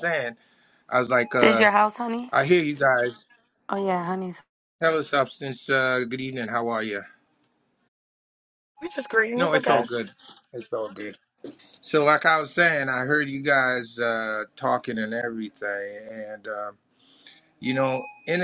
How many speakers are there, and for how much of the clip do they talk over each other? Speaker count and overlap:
three, about 4%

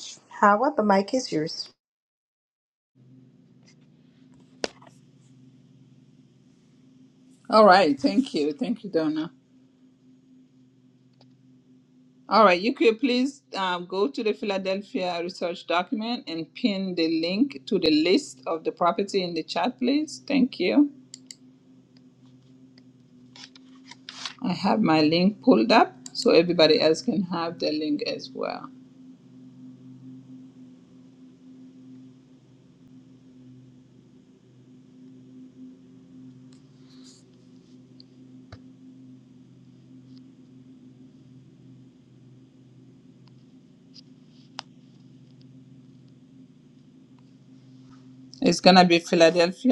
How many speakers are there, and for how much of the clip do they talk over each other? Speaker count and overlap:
two, no overlap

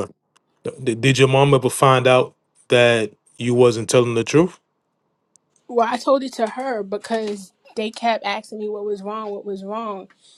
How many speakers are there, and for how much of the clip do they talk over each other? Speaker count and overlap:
two, under 1%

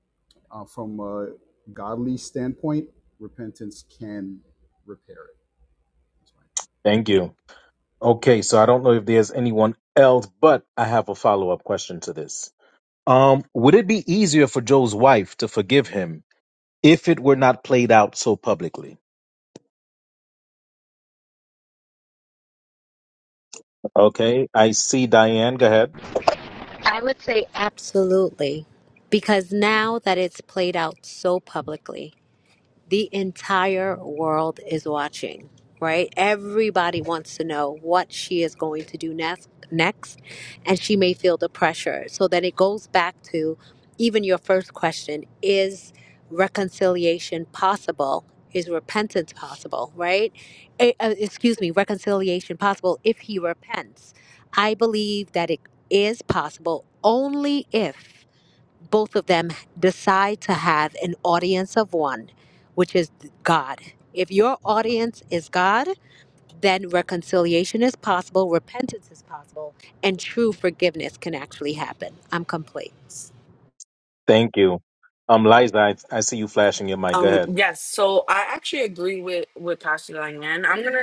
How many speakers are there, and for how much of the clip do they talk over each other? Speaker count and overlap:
four, under 1%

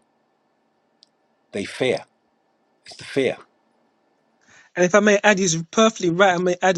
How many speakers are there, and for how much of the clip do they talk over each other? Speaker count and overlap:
two, no overlap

